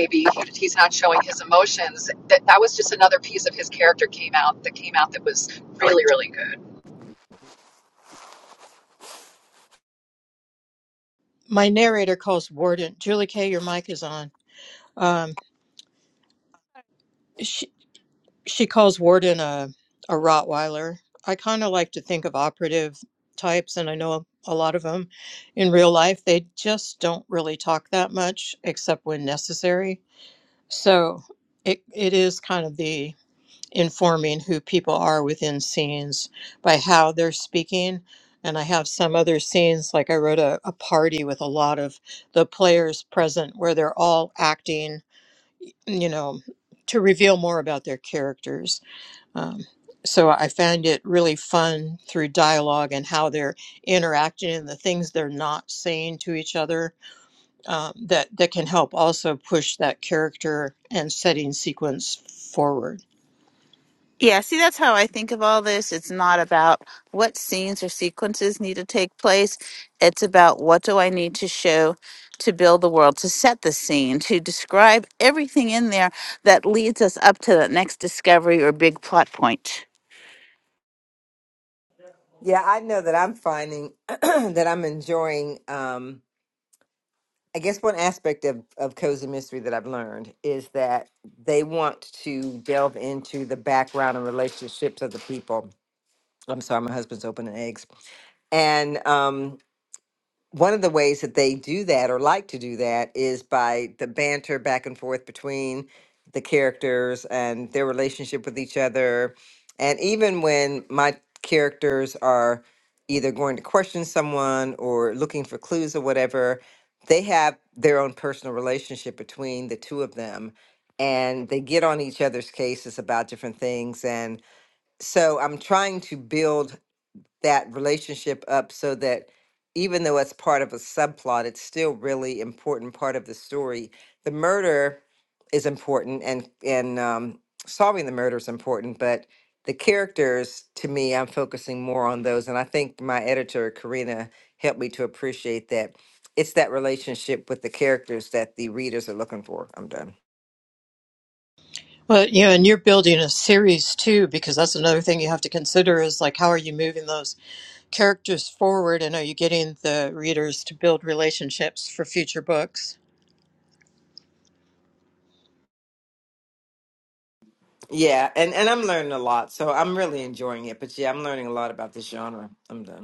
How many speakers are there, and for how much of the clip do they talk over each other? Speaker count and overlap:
4, no overlap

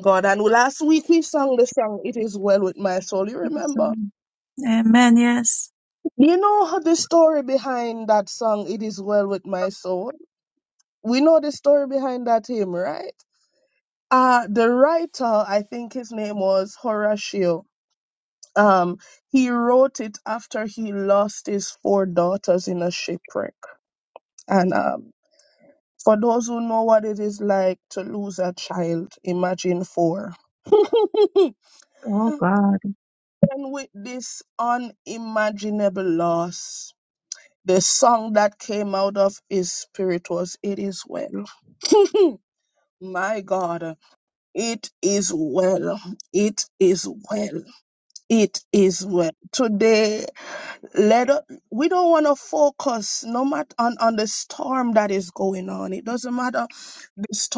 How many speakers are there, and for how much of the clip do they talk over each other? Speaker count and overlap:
2, about 1%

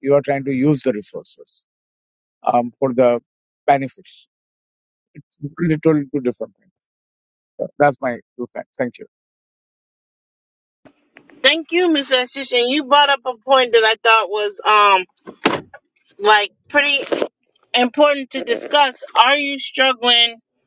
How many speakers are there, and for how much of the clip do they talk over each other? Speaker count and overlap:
2, no overlap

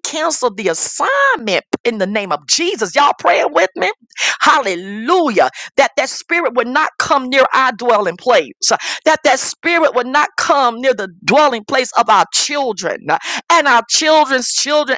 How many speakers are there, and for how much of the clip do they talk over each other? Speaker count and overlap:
1, no overlap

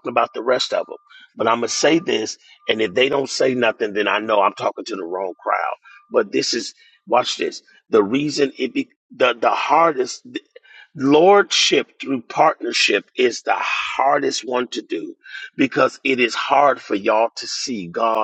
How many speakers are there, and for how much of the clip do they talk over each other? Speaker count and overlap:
1, no overlap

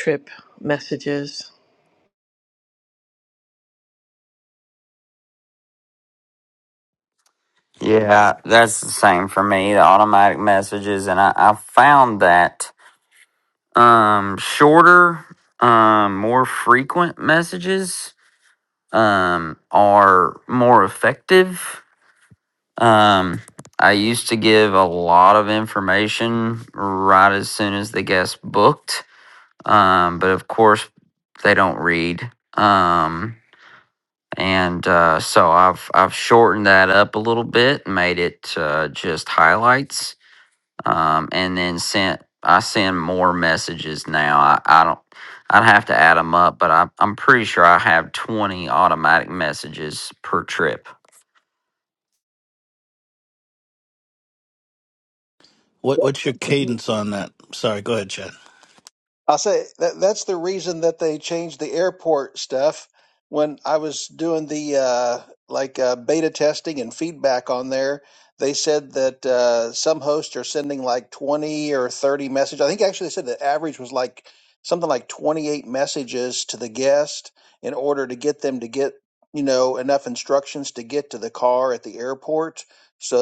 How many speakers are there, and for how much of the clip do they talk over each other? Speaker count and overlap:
4, no overlap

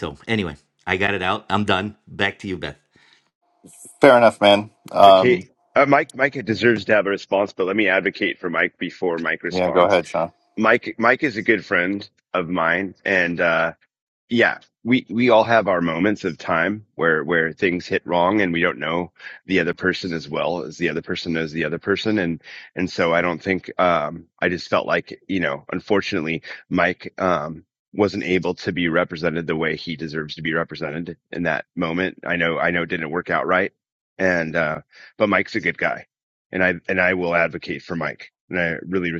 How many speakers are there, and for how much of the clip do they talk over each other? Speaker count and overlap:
3, about 2%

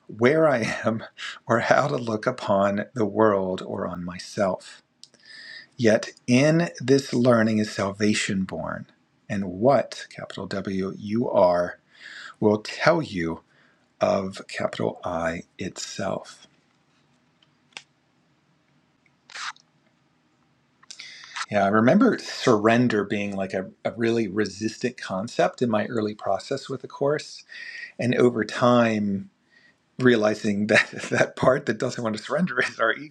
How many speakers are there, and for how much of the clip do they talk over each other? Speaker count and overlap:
1, no overlap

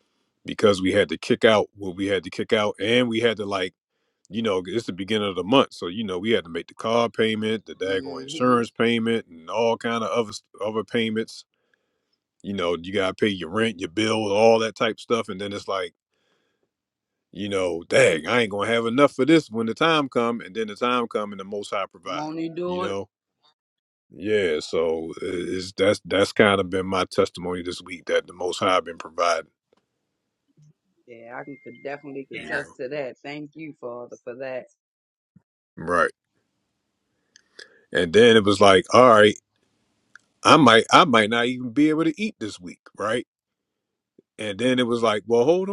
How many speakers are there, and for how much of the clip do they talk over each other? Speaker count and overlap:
2, about 3%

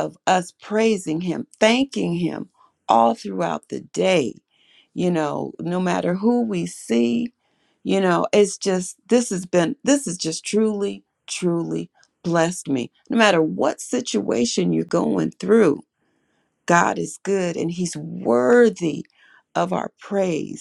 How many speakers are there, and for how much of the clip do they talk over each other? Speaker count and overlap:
1, no overlap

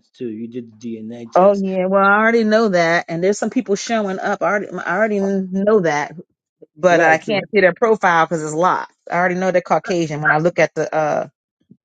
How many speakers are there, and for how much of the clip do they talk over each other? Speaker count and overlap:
2, about 6%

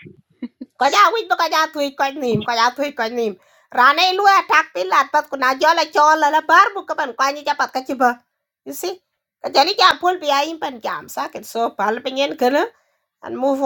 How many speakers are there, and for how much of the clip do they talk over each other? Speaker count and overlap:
1, no overlap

